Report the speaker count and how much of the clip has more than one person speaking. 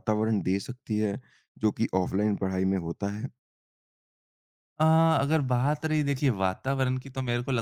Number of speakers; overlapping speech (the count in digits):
2, no overlap